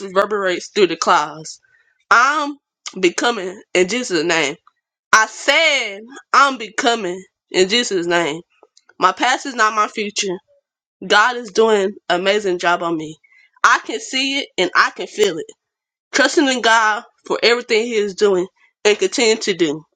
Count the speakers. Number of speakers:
1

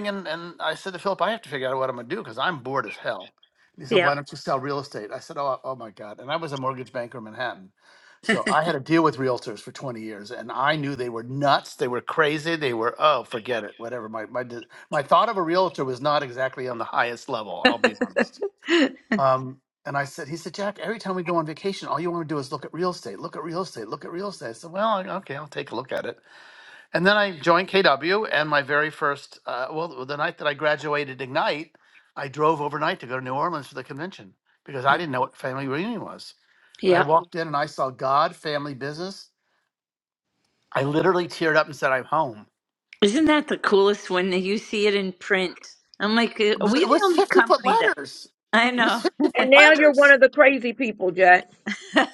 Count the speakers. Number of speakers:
3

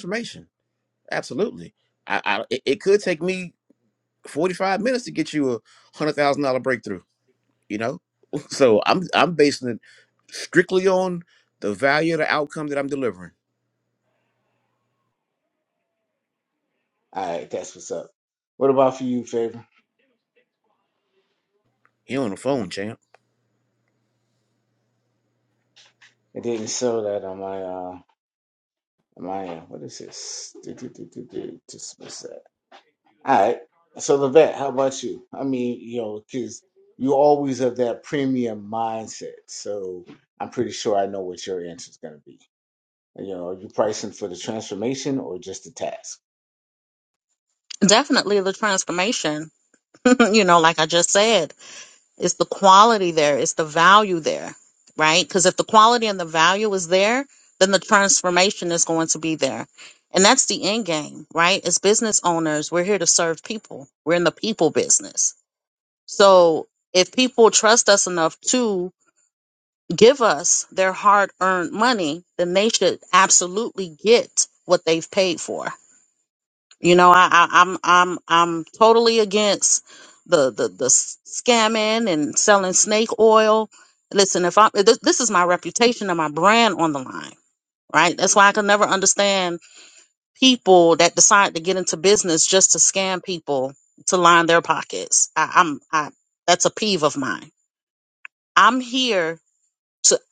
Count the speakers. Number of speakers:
3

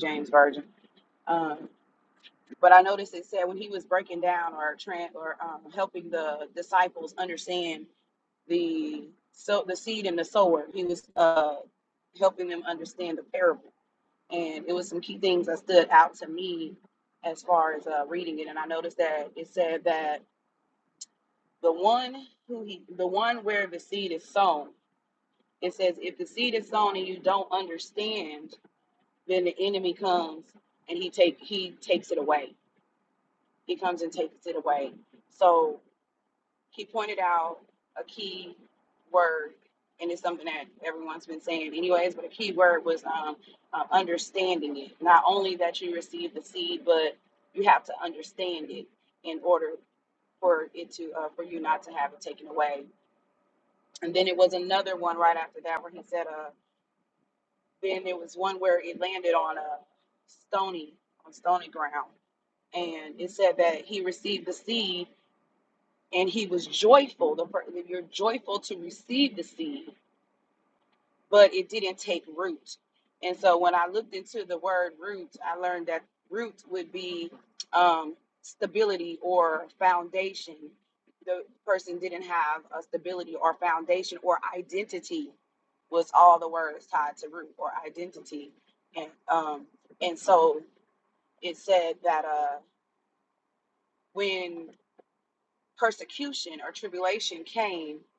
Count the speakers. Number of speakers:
1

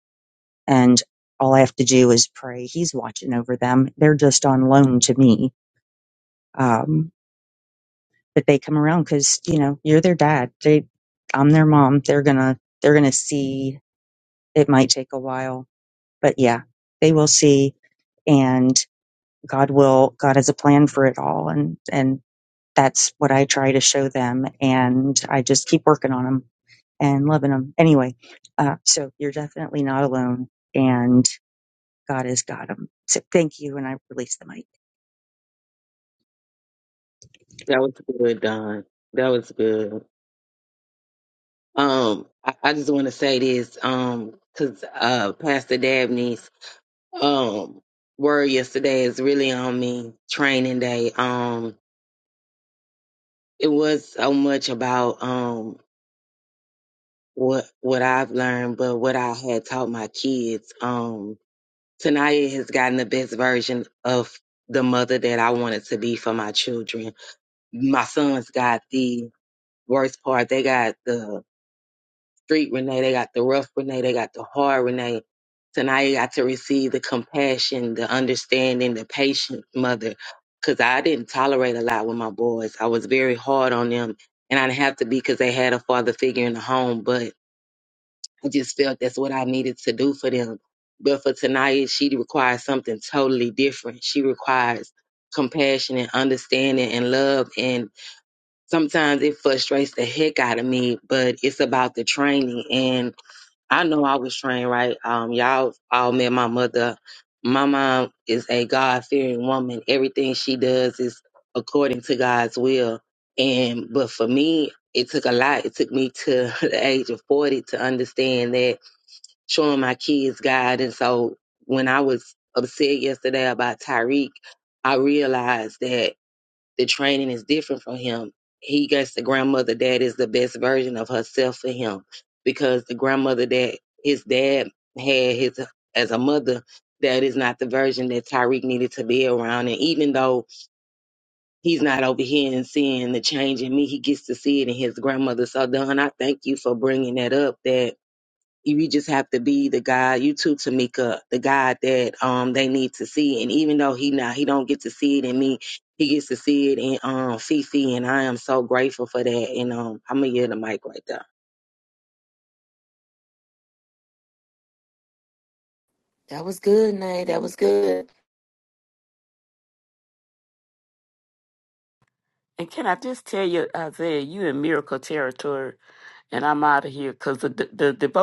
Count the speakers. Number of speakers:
4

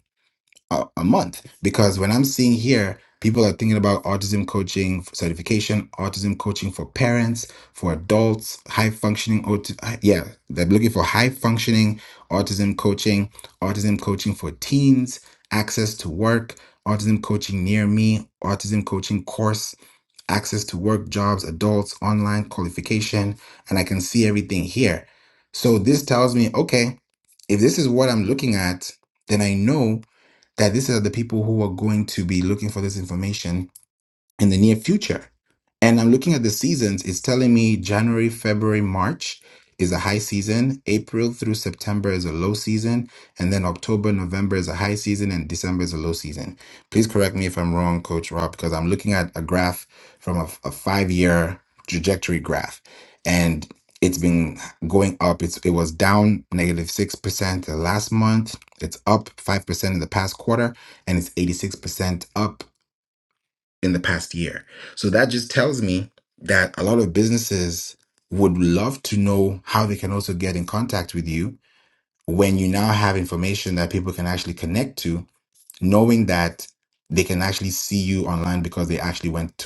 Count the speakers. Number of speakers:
1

